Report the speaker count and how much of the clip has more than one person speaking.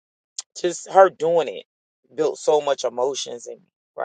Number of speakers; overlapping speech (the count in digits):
1, no overlap